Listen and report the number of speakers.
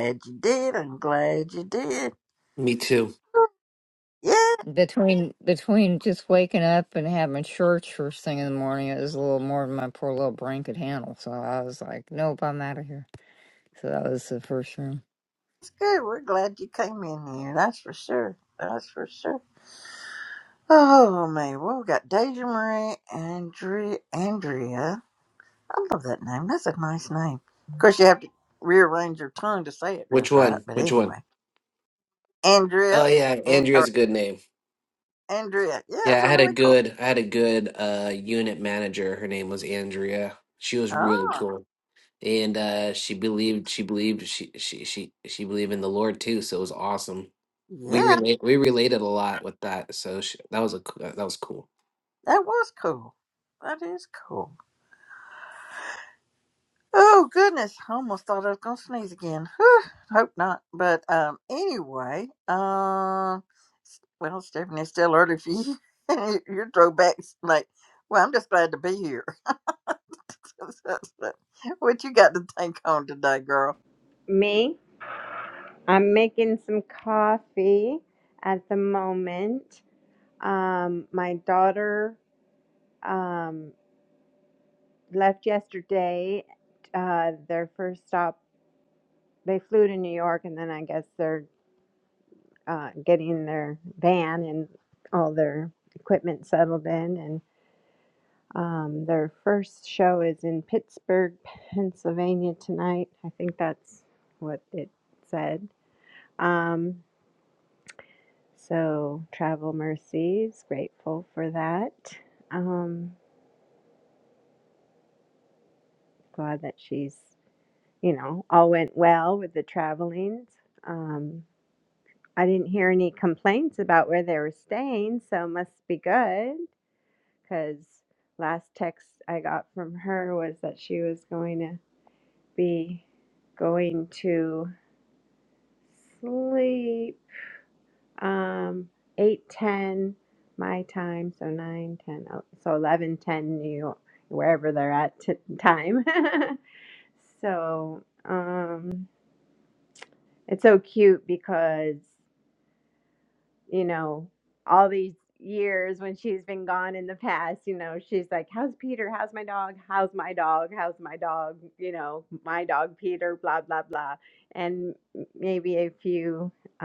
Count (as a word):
four